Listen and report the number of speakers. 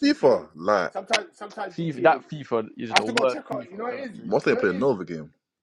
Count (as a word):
three